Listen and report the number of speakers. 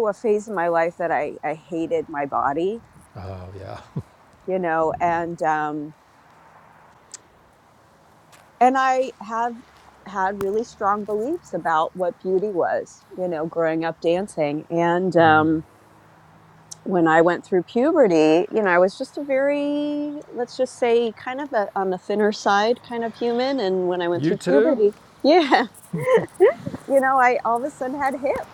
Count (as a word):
two